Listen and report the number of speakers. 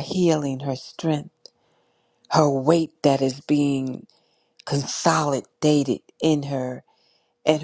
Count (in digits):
1